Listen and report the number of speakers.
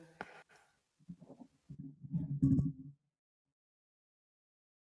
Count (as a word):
zero